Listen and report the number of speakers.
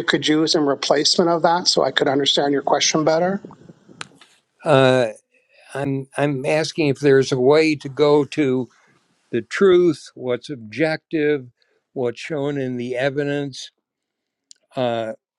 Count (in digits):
2